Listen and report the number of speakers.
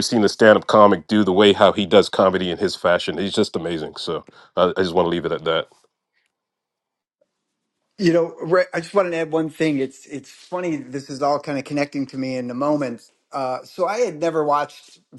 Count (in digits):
2